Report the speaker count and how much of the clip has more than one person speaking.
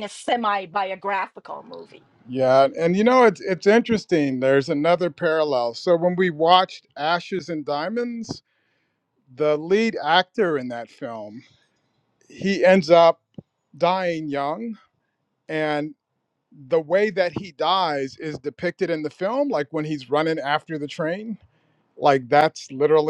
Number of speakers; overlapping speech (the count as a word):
two, no overlap